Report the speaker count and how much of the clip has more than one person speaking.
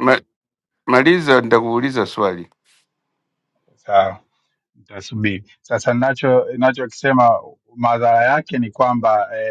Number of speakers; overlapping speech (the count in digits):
2, about 2%